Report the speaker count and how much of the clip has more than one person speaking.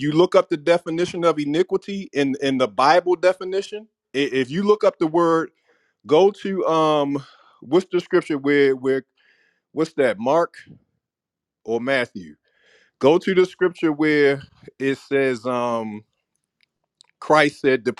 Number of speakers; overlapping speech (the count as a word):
one, no overlap